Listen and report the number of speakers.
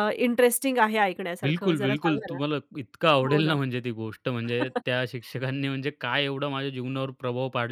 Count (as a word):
two